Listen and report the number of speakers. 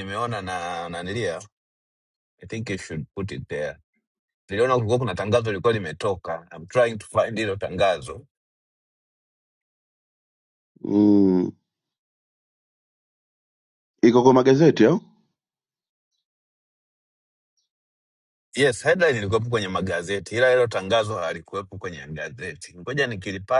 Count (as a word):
two